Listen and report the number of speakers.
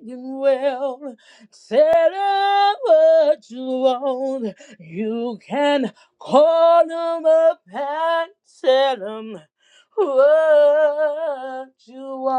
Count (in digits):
1